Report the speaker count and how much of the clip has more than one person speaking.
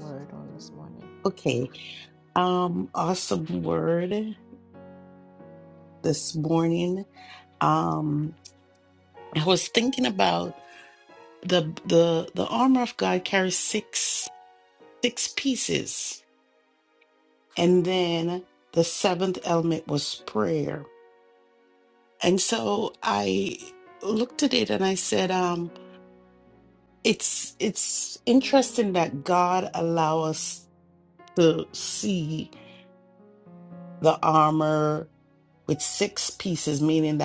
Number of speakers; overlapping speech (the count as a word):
two, no overlap